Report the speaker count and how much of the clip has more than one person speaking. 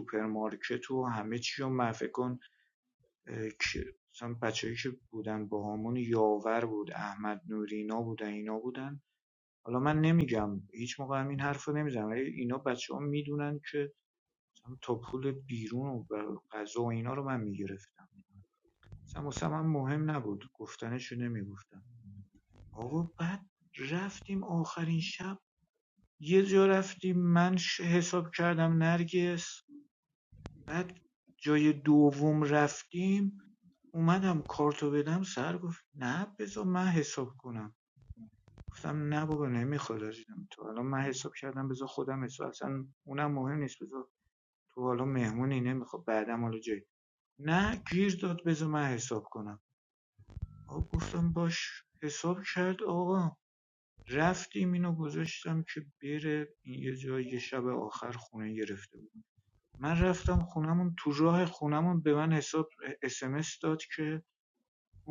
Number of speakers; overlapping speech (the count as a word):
one, no overlap